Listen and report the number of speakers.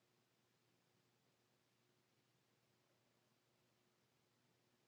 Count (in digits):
0